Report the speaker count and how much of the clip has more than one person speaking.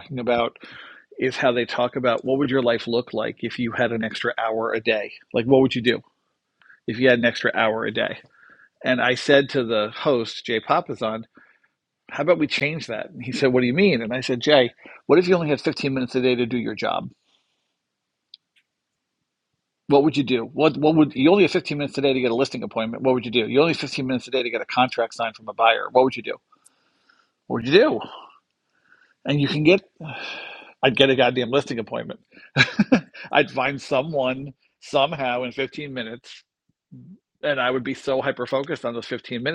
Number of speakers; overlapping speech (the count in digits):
1, no overlap